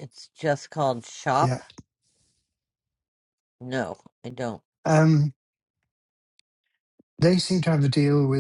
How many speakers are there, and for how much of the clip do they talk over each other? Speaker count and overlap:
2, about 3%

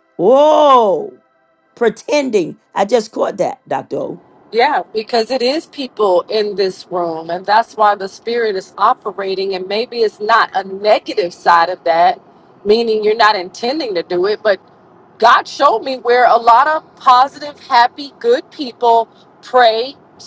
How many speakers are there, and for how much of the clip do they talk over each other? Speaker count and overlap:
2, no overlap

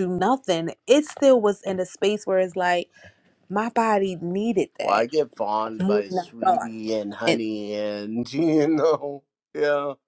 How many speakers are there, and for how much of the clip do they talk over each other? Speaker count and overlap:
2, about 13%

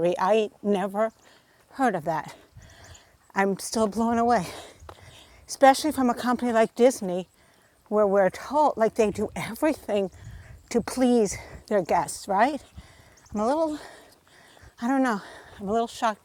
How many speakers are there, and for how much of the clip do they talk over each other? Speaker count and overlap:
1, no overlap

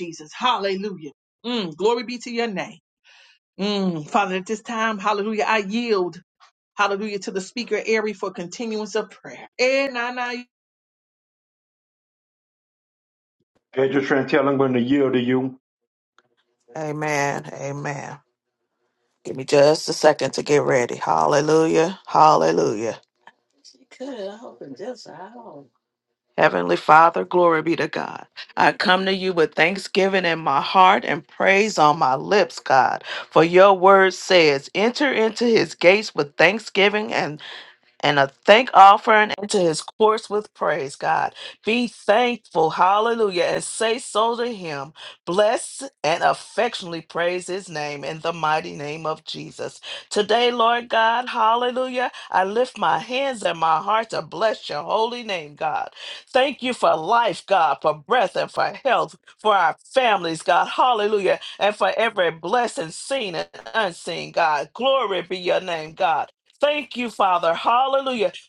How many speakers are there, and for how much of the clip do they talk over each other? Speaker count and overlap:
3, no overlap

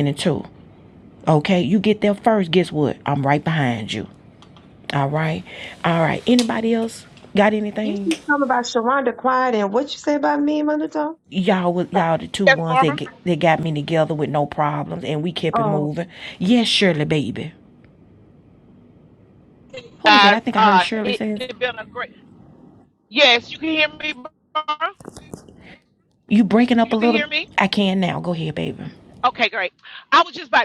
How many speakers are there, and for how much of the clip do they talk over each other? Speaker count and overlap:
3, about 10%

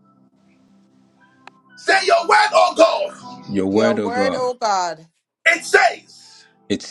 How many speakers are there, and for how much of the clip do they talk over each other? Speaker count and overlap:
3, about 11%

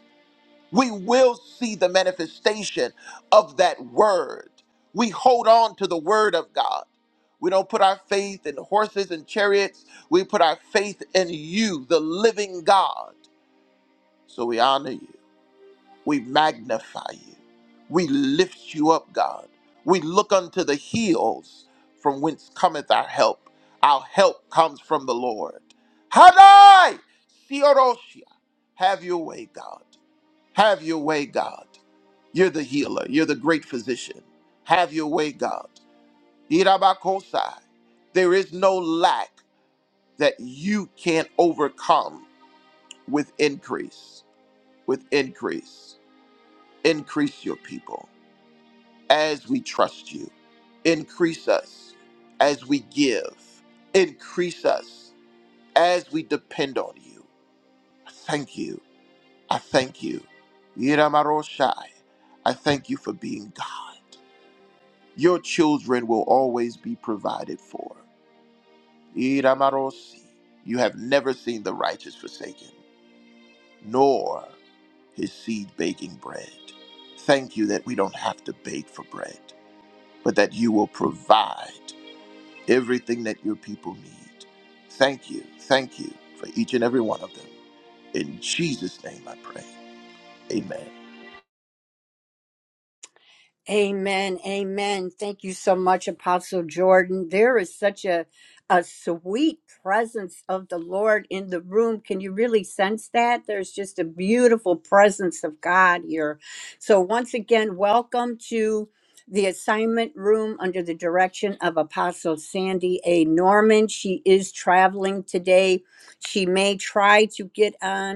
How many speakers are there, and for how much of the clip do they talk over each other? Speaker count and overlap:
2, no overlap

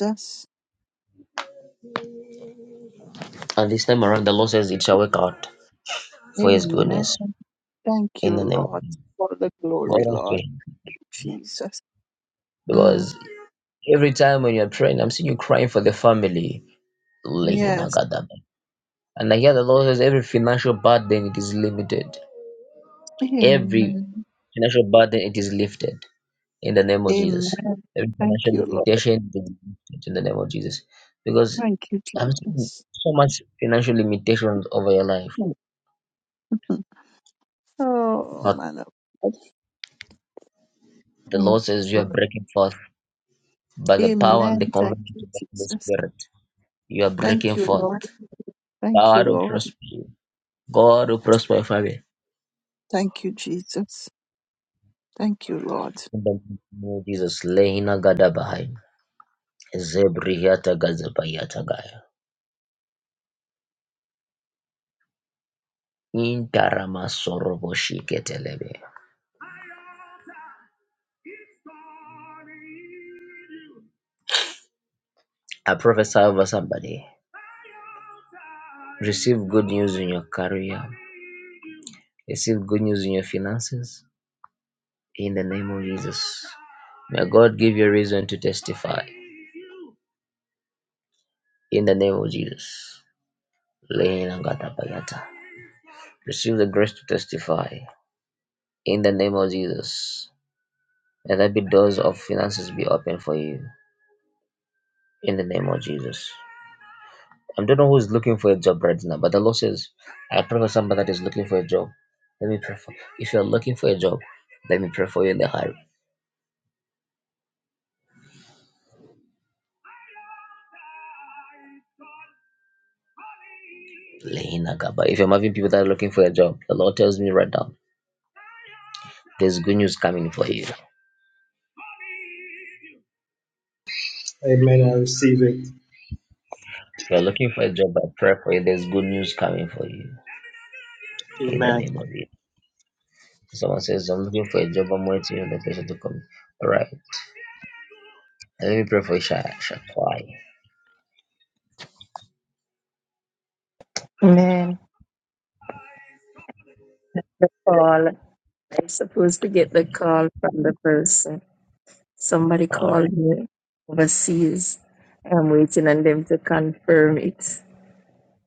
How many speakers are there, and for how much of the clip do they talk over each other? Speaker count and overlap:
4, about 5%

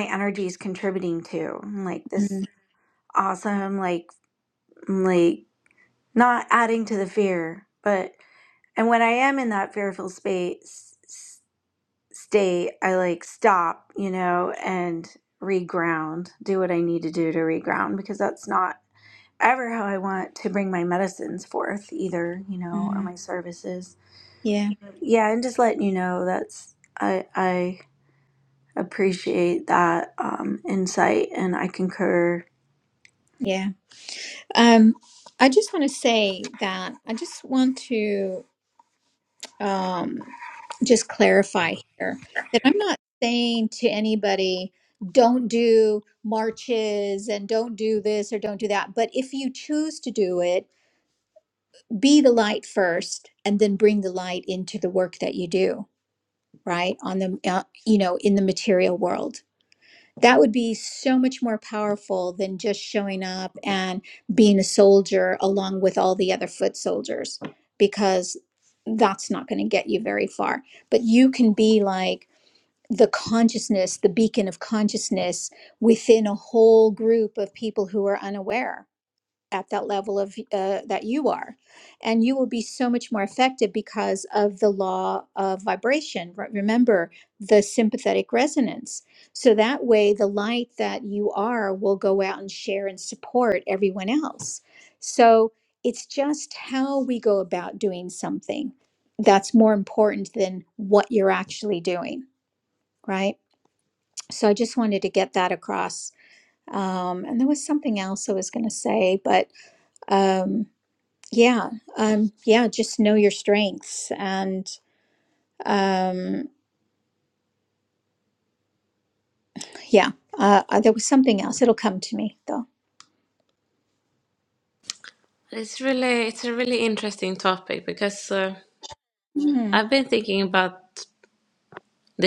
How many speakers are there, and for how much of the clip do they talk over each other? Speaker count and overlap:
3, under 1%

